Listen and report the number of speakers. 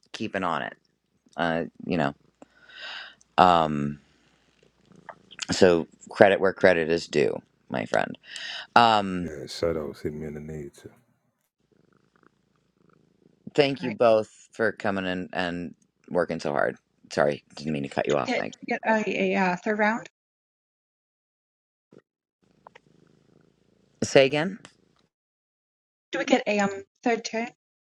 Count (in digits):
3